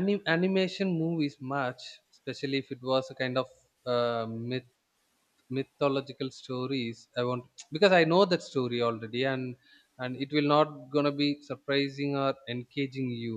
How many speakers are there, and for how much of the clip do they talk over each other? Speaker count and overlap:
1, no overlap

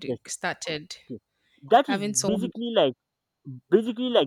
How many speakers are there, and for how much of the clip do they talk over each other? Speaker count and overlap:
2, about 16%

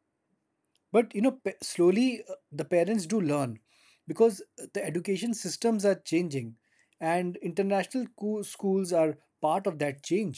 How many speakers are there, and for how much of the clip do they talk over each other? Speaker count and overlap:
1, no overlap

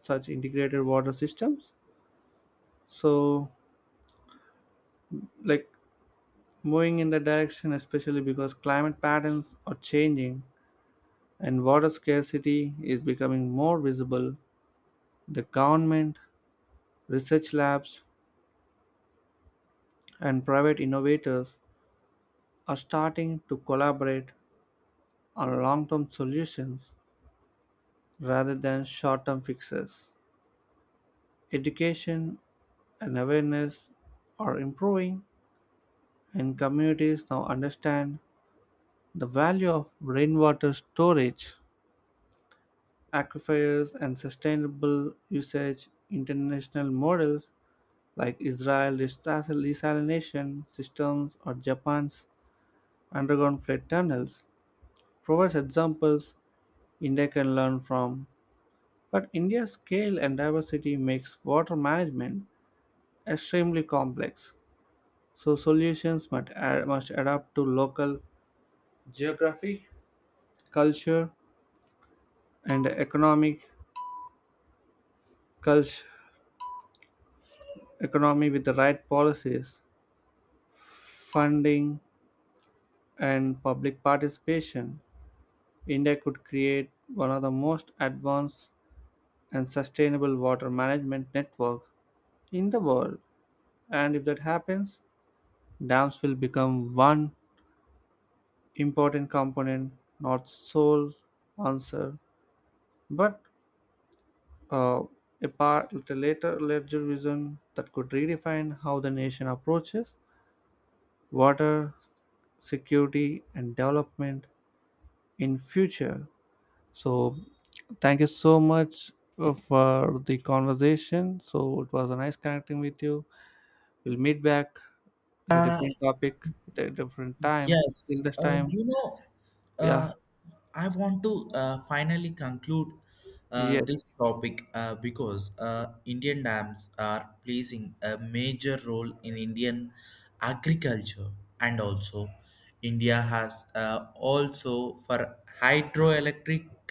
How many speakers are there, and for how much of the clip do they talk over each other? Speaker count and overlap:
2, about 1%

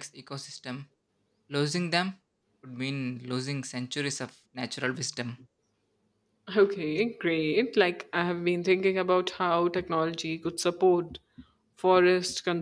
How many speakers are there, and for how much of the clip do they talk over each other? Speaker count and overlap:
2, no overlap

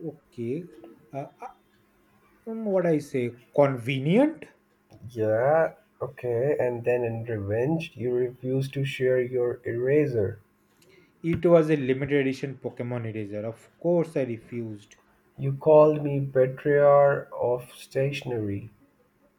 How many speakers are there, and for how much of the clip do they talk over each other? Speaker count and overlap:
2, no overlap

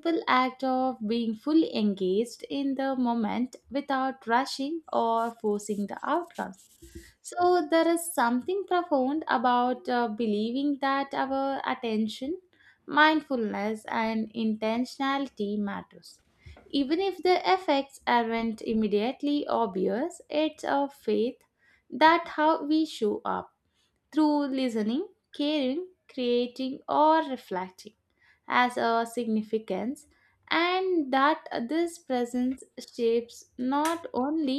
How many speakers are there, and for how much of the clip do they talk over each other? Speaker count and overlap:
1, no overlap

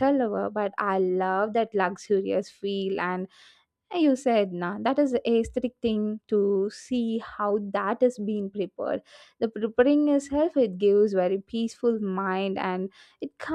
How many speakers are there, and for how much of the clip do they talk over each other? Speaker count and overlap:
1, no overlap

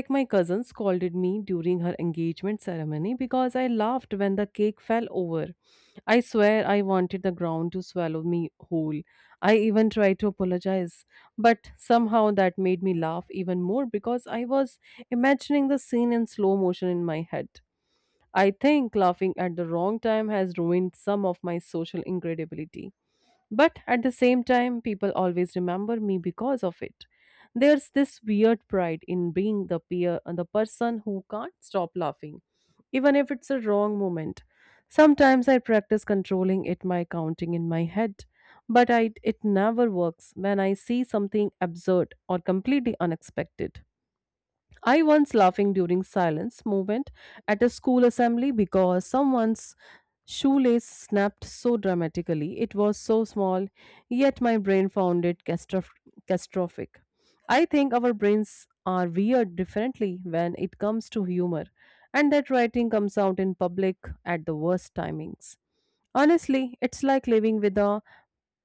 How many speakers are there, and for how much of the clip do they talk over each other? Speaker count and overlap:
1, no overlap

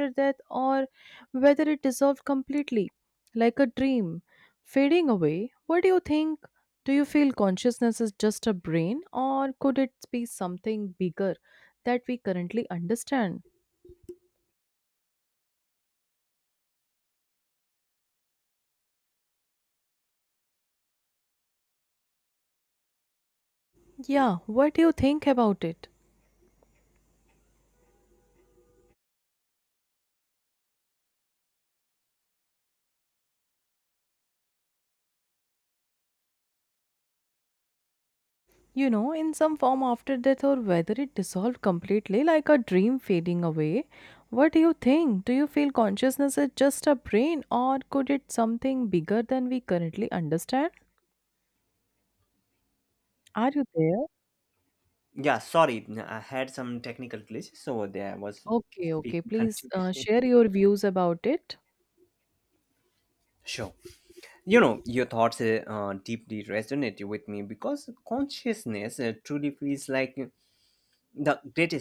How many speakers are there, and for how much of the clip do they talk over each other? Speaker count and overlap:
2, about 1%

